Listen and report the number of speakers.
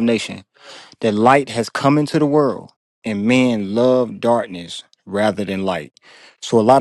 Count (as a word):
one